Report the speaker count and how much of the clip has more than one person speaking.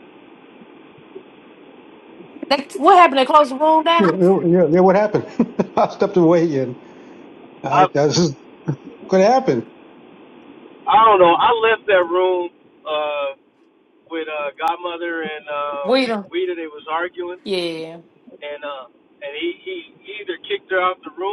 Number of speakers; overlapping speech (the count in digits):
3, about 3%